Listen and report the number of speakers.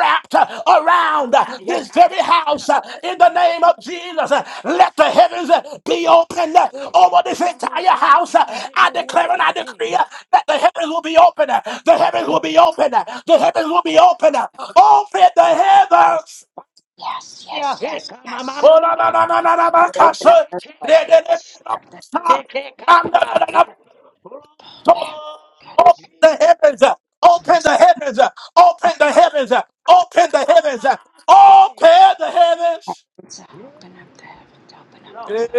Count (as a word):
three